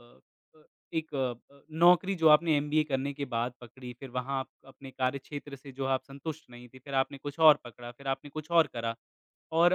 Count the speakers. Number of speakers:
one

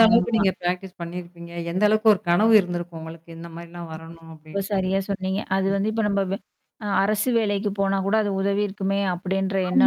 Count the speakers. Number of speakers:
two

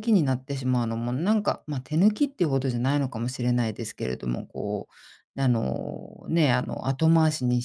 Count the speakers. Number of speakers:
one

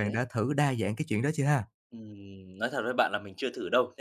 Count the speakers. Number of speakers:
two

